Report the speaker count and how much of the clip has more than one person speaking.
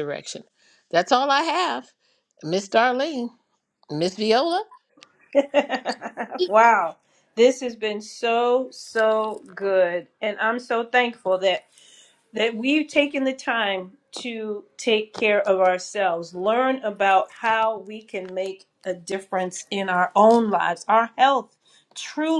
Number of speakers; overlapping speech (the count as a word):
two, no overlap